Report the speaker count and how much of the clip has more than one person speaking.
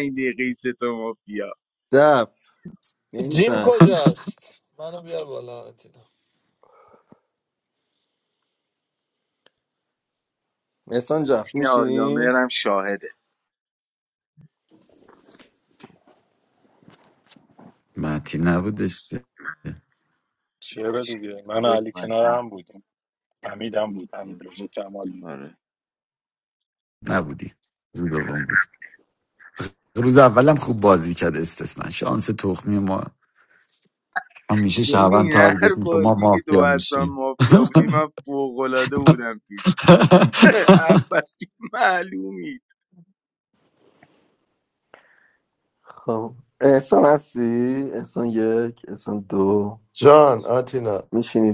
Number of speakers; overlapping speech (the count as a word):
six, about 9%